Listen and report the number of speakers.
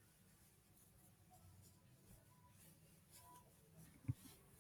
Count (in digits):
0